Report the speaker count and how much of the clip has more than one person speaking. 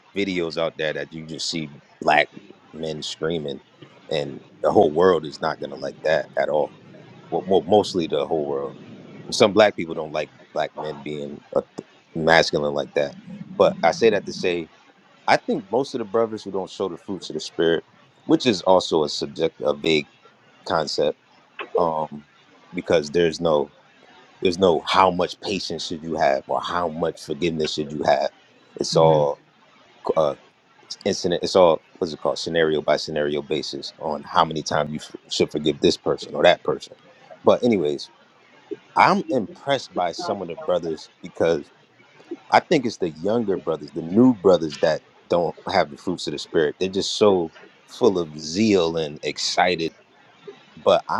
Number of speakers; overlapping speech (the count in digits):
1, no overlap